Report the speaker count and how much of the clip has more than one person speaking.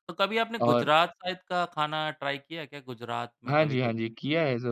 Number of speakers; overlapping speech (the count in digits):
2, about 16%